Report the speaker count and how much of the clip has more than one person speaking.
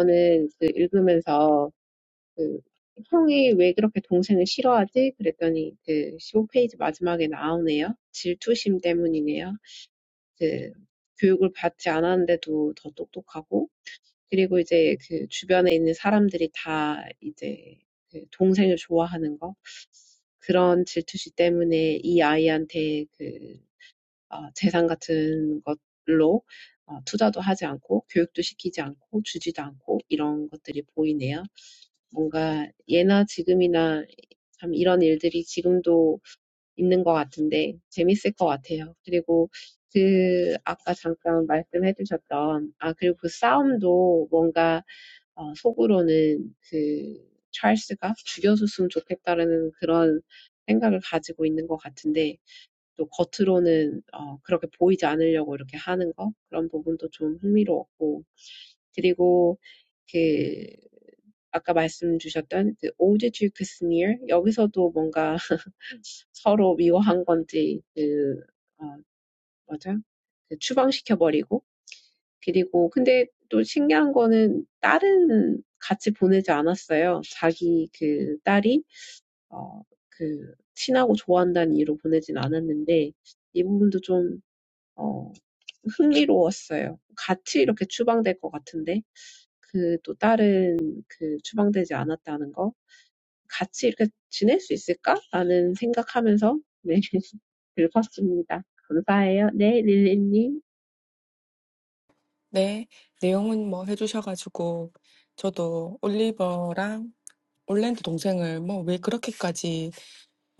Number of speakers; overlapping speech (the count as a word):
two, no overlap